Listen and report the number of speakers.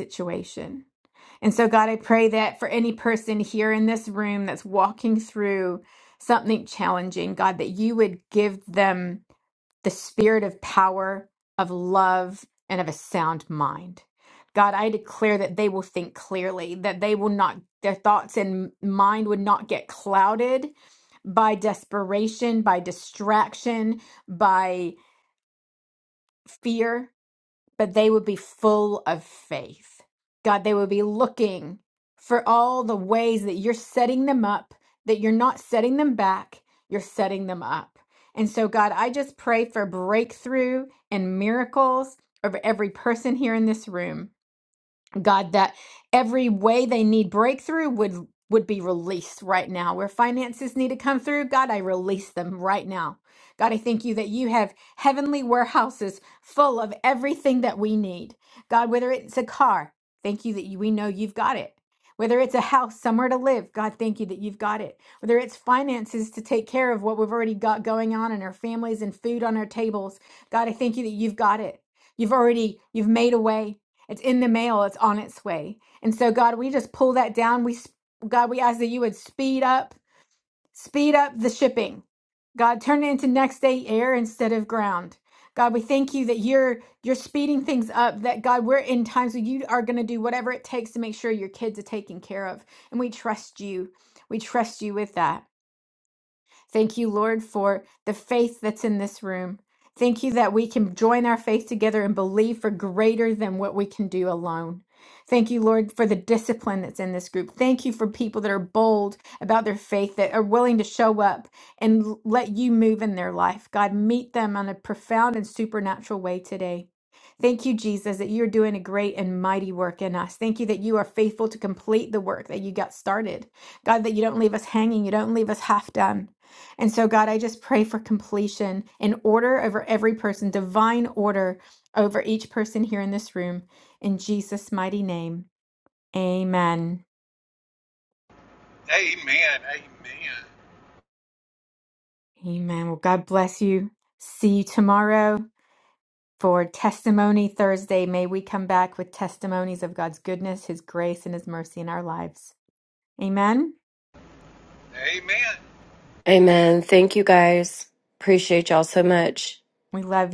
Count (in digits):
3